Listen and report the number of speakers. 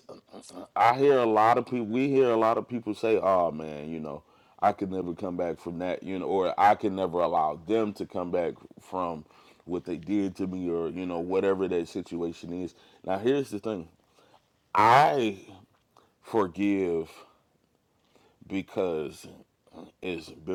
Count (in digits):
1